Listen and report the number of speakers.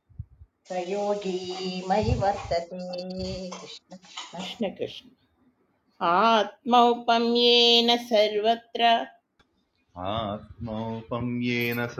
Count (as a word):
three